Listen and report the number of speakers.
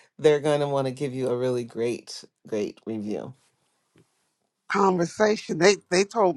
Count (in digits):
2